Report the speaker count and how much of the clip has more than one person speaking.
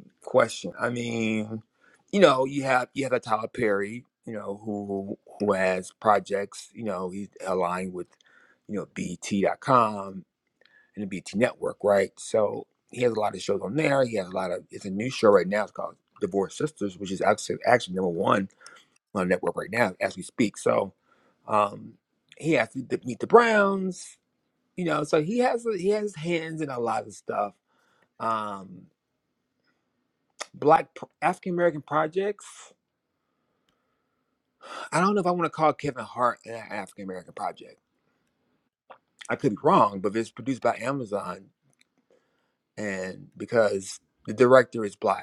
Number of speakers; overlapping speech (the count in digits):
1, no overlap